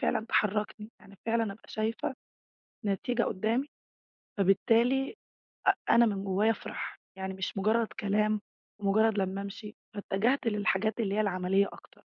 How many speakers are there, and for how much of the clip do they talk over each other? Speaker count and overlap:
1, no overlap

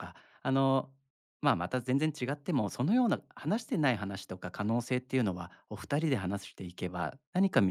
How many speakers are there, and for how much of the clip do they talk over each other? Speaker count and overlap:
1, no overlap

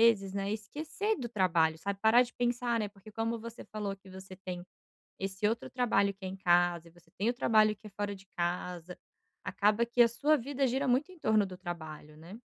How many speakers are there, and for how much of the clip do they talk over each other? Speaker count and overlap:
1, no overlap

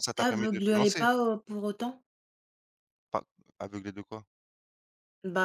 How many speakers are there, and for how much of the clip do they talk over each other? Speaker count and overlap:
2, about 17%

